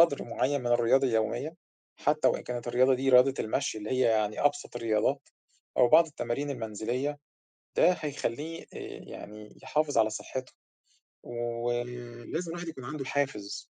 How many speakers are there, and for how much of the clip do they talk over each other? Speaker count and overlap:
1, no overlap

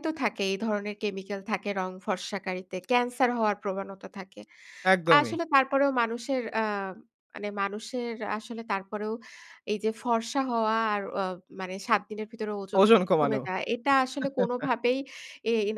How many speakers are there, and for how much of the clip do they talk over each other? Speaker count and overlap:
2, about 4%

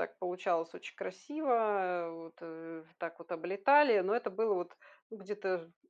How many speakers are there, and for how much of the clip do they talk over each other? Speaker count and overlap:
1, no overlap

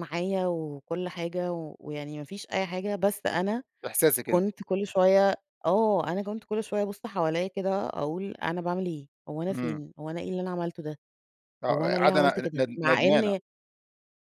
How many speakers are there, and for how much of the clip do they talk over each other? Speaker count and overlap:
2, about 14%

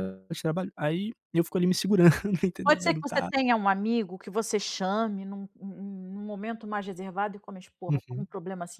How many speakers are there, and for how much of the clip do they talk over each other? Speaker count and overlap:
2, about 12%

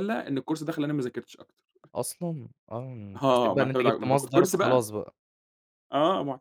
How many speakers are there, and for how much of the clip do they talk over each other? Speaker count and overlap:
2, about 26%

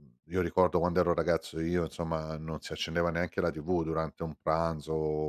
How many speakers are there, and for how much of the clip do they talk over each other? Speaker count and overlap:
1, no overlap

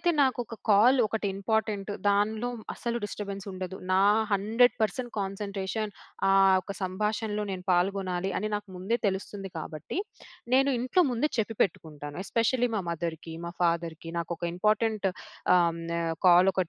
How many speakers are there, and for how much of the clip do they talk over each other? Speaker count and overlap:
1, no overlap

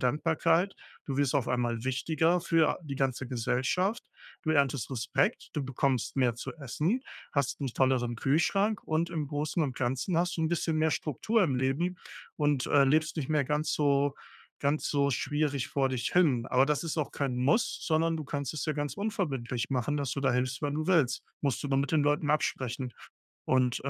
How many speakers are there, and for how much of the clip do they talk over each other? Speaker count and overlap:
1, no overlap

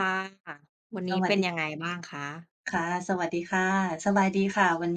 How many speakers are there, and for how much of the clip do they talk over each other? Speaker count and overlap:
2, about 7%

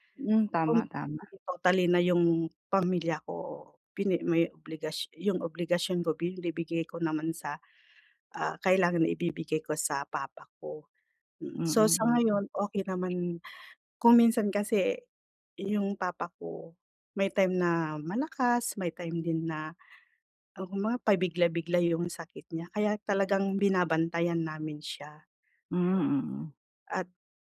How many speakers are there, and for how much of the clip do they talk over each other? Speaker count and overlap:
2, about 3%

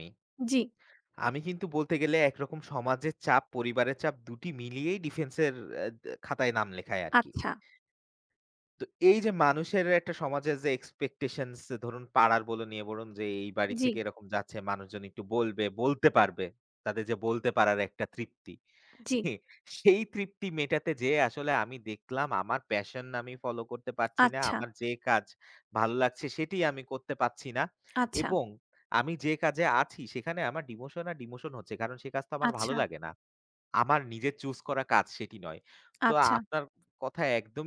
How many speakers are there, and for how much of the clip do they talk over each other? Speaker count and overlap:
2, about 4%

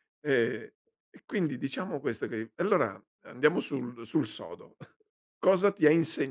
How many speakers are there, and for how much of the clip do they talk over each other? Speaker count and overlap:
1, no overlap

